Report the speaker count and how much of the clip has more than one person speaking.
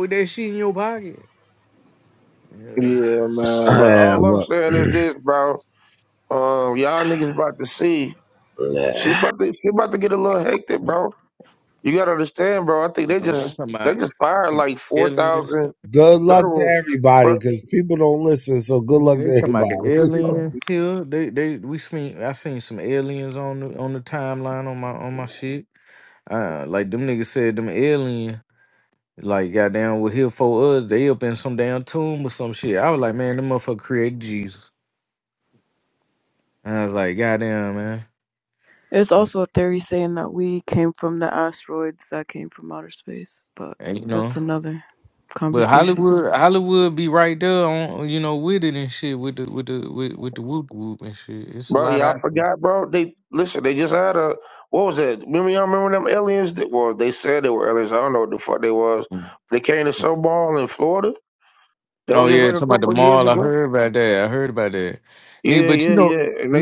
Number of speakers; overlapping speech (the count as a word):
four, about 12%